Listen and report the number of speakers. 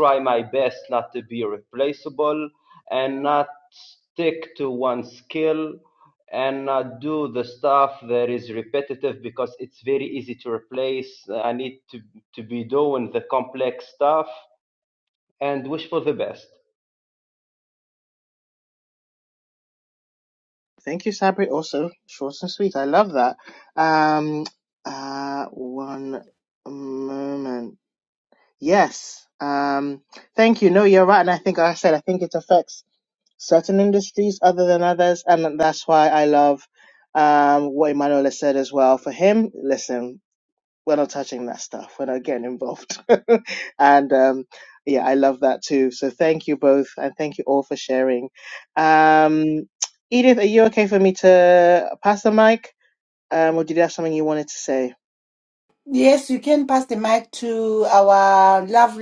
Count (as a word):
three